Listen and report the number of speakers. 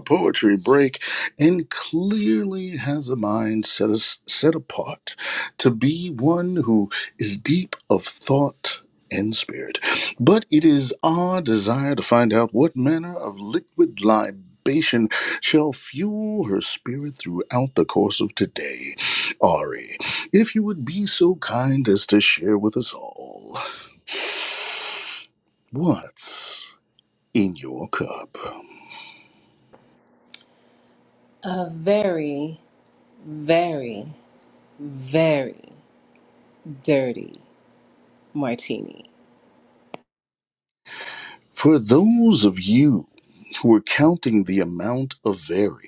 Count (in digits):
2